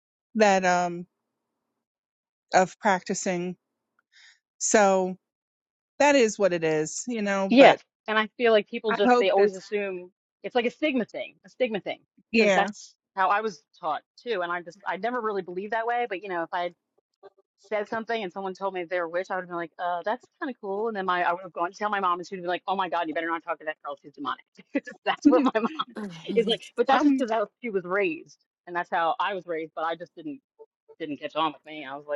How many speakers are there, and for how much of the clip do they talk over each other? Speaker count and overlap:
two, about 5%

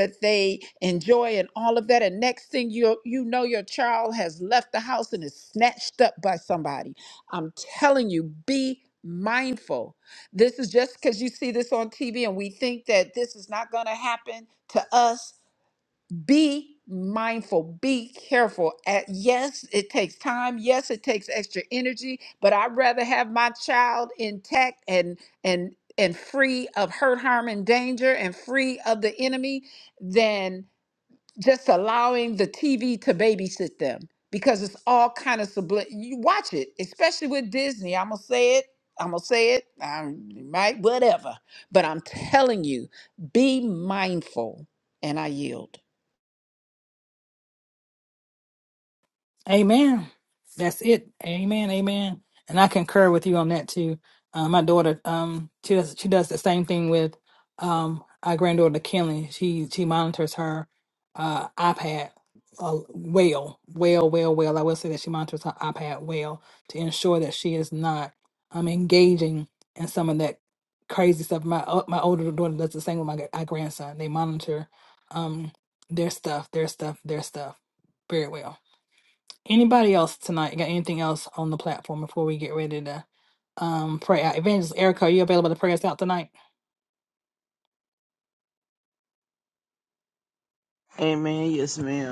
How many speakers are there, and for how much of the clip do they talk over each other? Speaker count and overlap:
three, no overlap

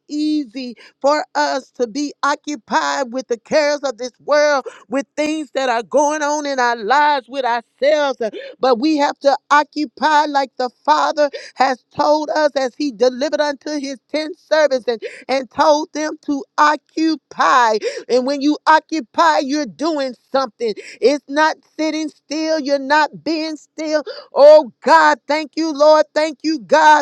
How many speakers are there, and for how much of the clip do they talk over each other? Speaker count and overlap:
one, no overlap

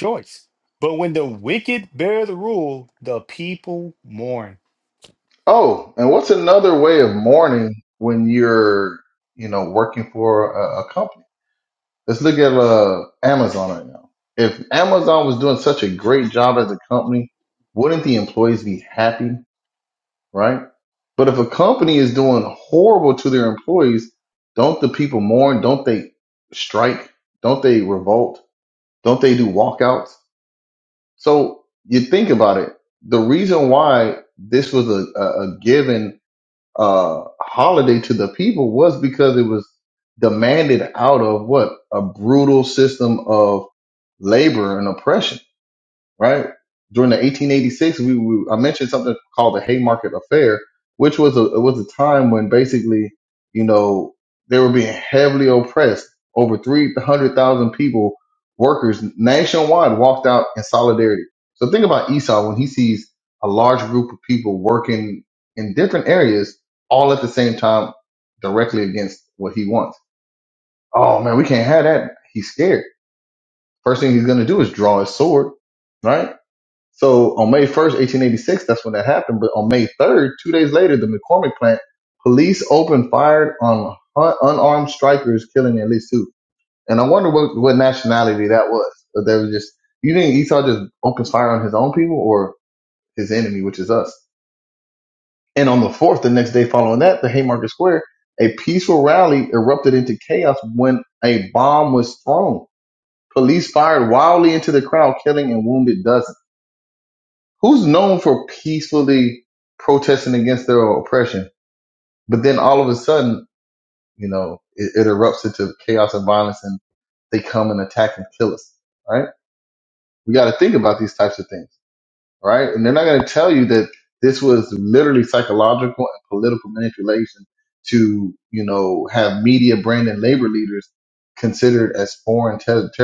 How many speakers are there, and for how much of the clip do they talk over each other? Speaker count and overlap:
two, no overlap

